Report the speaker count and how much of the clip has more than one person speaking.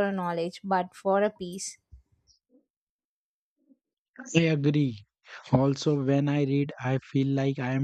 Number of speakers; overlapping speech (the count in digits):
2, no overlap